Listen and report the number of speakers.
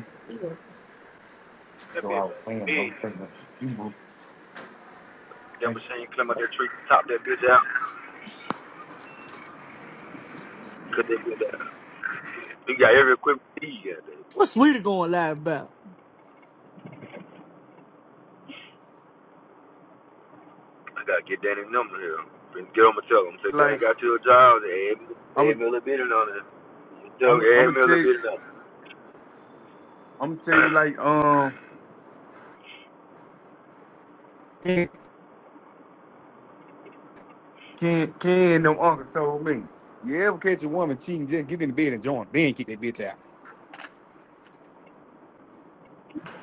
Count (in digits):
3